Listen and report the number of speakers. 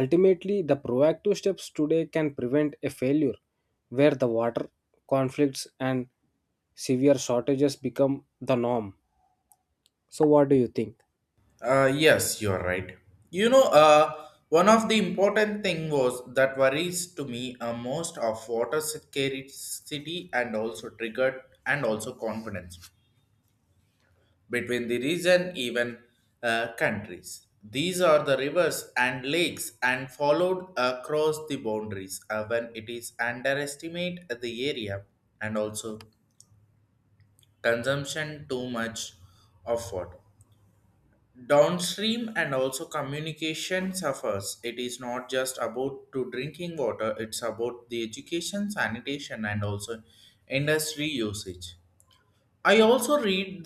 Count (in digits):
2